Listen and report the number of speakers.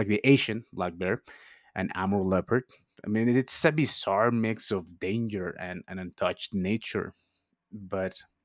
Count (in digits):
1